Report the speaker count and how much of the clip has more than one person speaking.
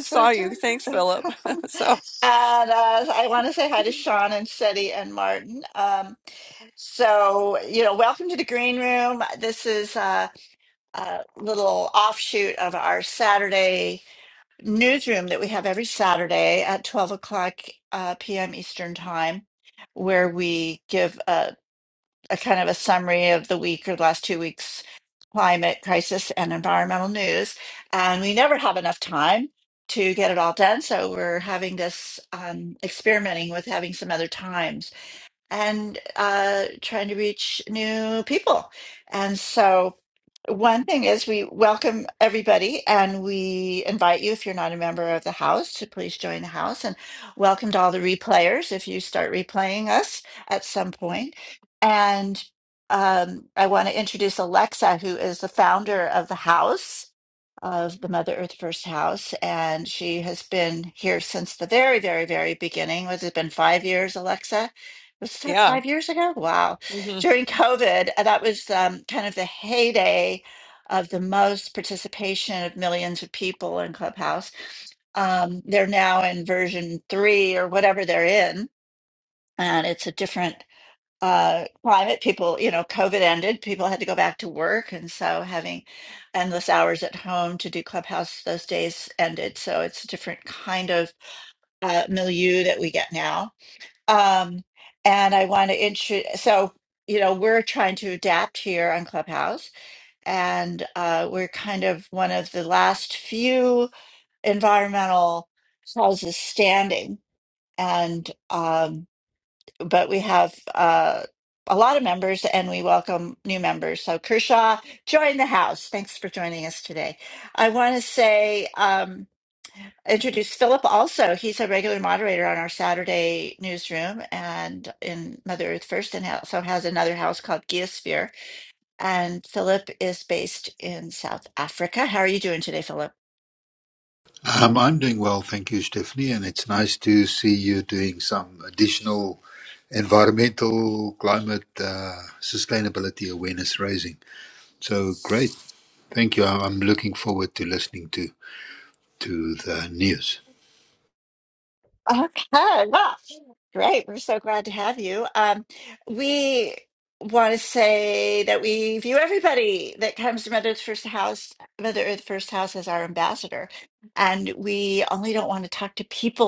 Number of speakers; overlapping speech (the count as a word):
three, about 1%